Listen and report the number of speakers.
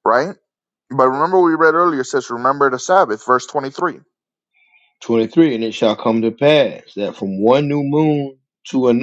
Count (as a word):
two